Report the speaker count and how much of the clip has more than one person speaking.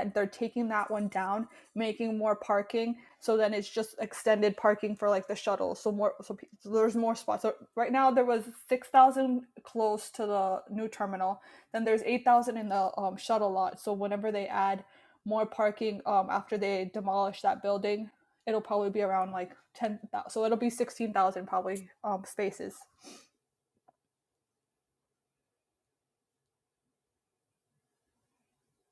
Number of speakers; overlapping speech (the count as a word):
one, no overlap